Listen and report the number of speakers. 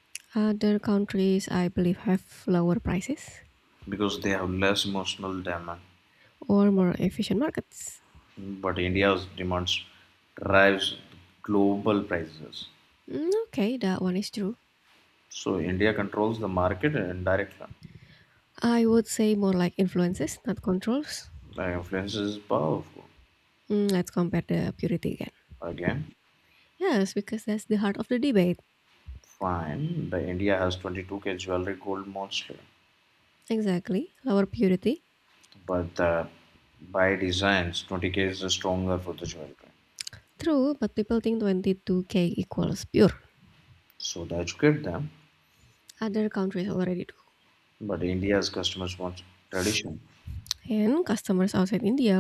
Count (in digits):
2